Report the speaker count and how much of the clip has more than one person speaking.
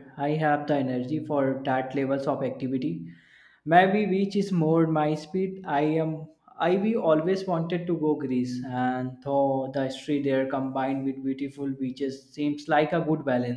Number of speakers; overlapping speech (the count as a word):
one, no overlap